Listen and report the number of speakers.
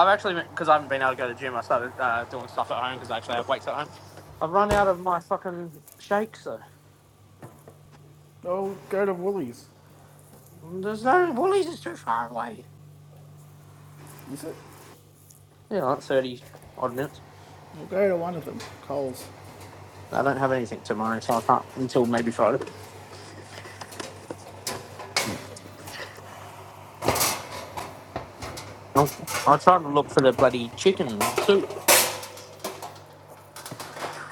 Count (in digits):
2